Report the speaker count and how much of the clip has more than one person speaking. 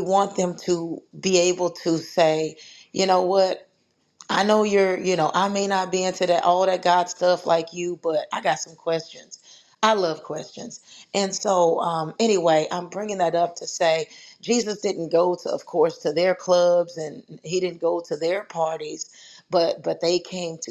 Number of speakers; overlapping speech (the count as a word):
one, no overlap